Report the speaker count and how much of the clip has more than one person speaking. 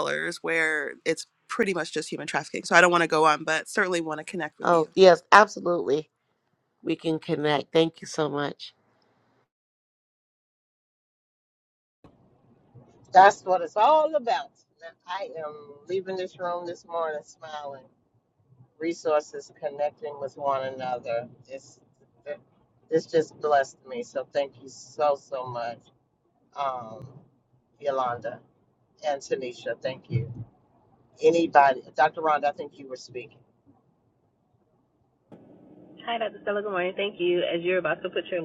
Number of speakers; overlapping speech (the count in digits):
4, about 1%